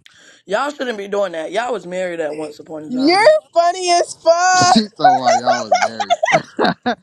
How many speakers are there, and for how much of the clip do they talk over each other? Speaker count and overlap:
three, about 9%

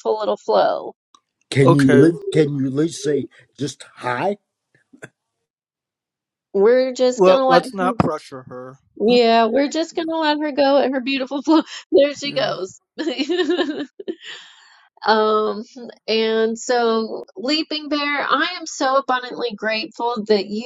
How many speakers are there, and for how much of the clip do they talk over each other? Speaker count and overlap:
three, about 7%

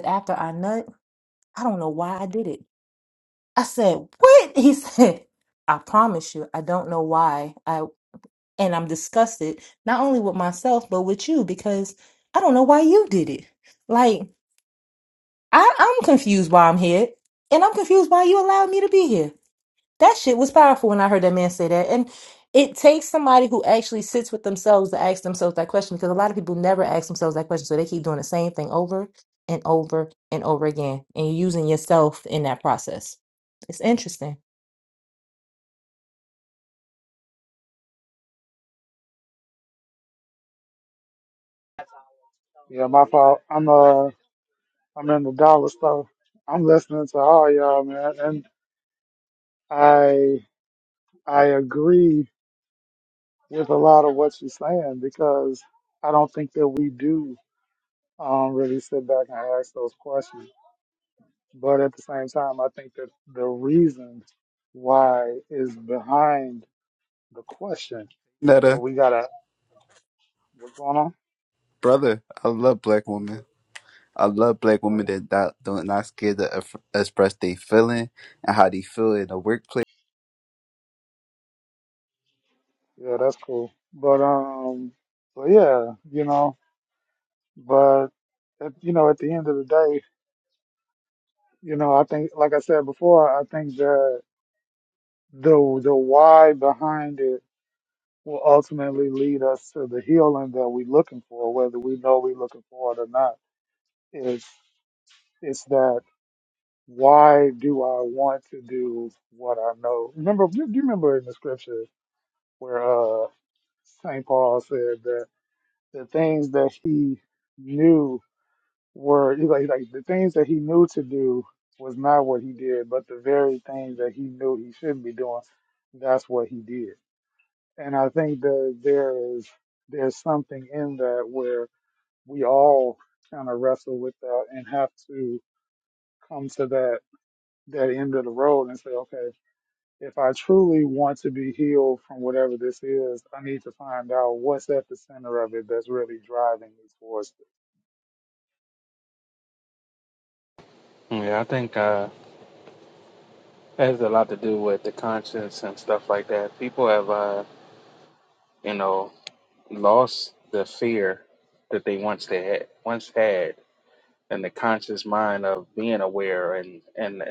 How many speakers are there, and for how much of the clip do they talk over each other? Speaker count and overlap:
four, under 1%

